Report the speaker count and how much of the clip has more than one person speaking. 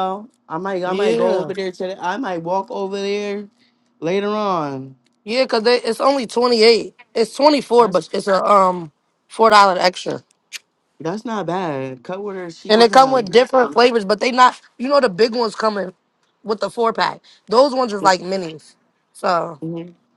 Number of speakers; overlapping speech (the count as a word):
two, about 7%